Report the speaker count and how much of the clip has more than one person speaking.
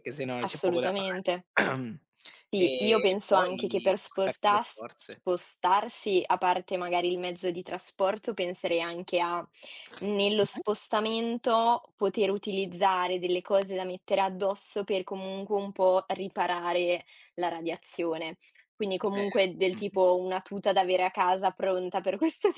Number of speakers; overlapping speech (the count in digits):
2, about 16%